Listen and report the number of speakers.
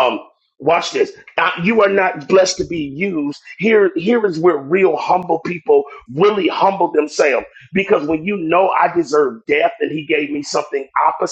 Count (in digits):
1